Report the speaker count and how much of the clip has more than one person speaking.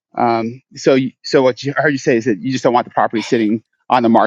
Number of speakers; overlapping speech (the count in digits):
1, no overlap